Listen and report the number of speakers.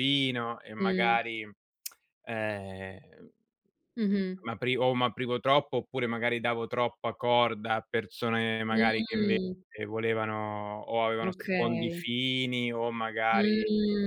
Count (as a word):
two